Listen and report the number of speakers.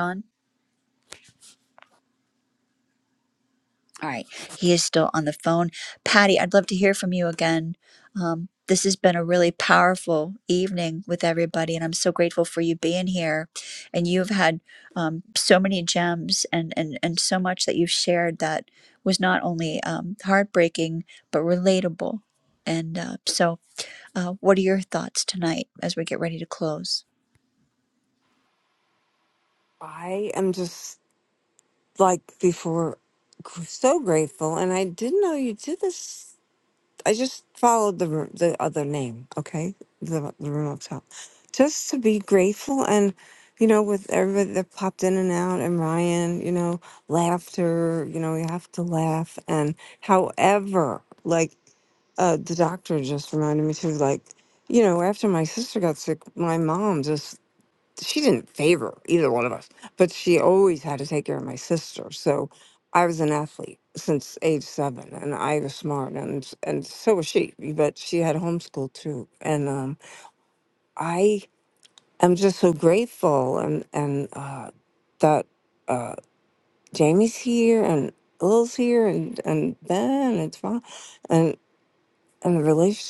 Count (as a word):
two